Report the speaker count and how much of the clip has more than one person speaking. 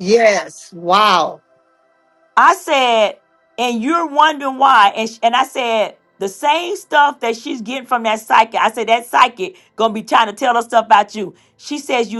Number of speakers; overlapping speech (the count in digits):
2, no overlap